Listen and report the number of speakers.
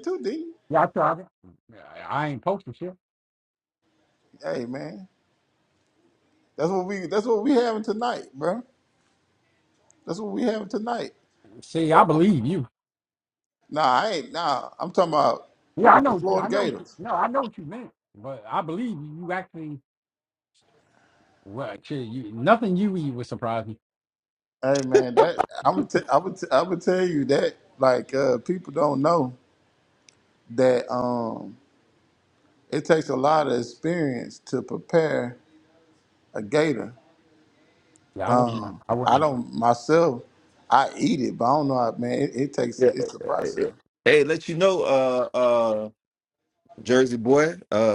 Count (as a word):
three